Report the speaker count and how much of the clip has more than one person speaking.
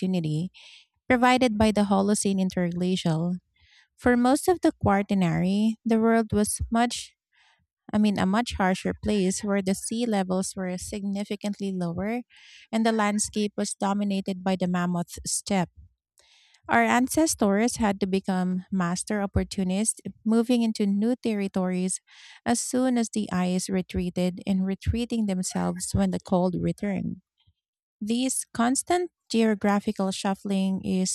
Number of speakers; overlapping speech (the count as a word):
one, no overlap